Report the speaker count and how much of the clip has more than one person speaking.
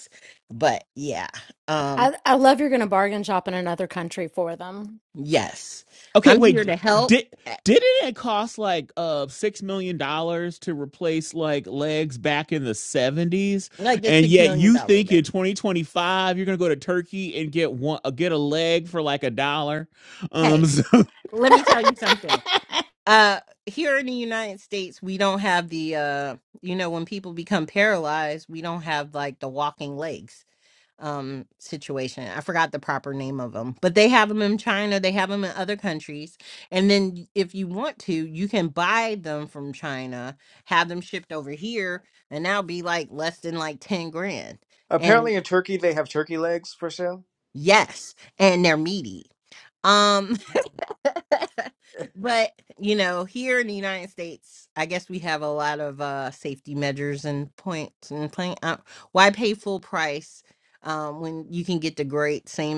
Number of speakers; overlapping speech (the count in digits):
4, about 4%